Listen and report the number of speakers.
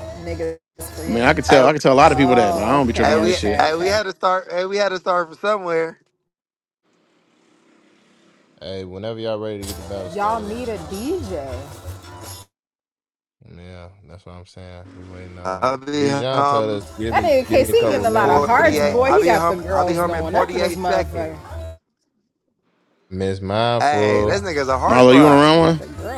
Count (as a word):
four